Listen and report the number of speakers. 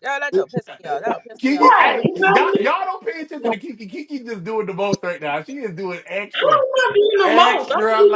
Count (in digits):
3